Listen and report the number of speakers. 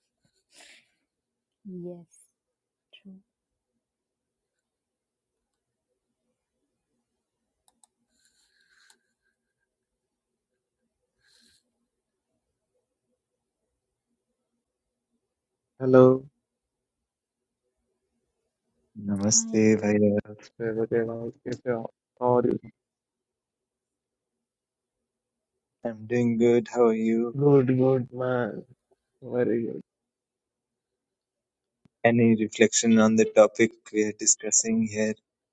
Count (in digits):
3